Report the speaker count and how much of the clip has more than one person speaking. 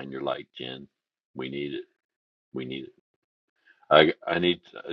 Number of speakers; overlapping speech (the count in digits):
1, no overlap